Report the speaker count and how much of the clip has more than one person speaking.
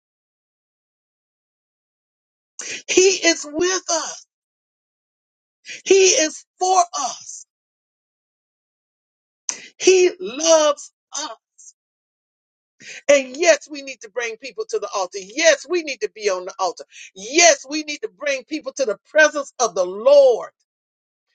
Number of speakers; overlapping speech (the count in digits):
1, no overlap